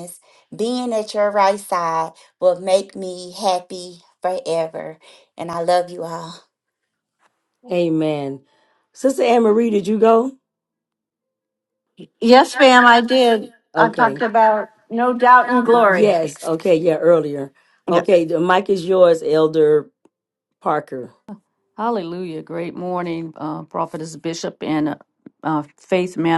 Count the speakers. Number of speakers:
four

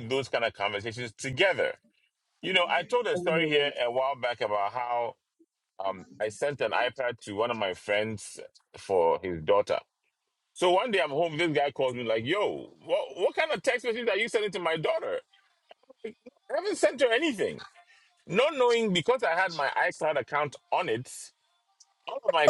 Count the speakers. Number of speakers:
one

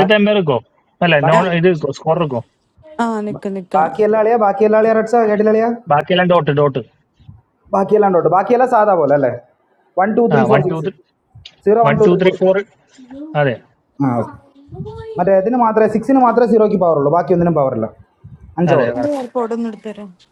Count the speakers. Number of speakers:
three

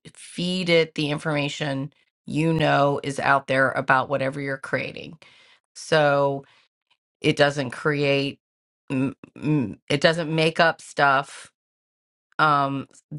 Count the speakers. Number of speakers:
one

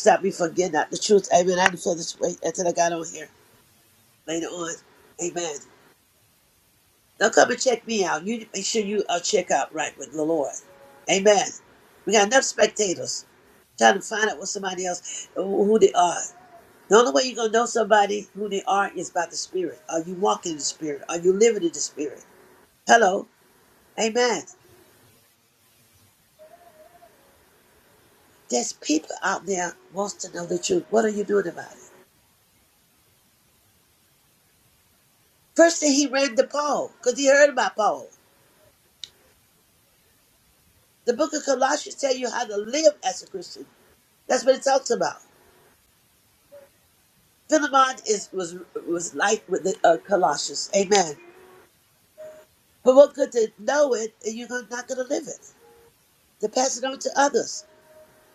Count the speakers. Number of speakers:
one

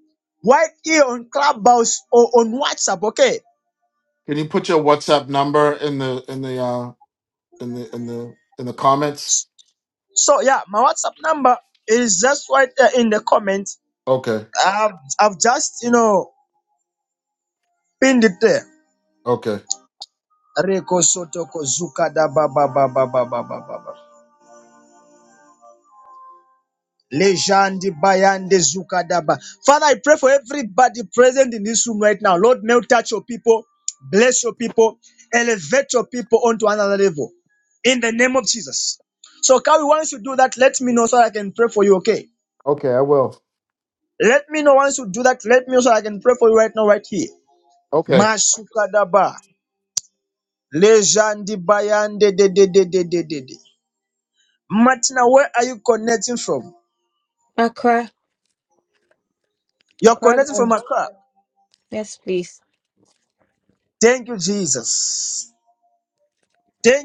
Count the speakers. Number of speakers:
three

